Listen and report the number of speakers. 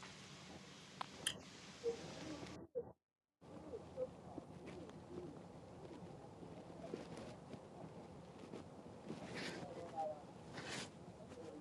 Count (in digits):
0